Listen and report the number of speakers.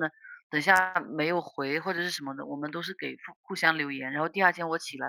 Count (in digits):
1